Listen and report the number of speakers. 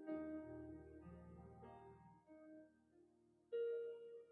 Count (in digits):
0